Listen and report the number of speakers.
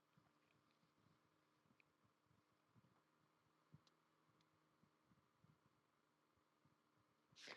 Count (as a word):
zero